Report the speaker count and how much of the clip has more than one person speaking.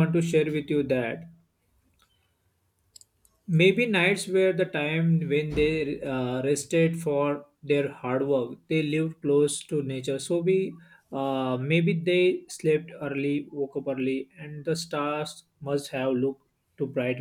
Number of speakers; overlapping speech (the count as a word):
one, no overlap